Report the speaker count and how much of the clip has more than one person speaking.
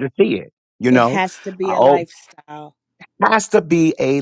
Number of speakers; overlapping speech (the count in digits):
2, about 16%